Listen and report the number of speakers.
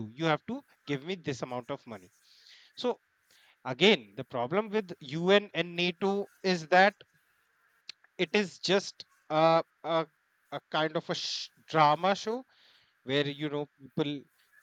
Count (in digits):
1